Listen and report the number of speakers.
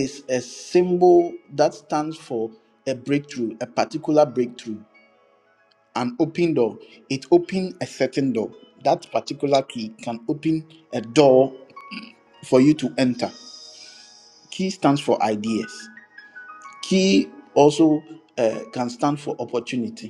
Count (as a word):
one